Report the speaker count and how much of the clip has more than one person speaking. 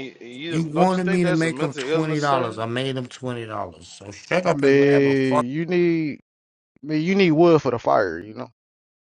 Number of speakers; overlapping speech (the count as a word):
three, about 34%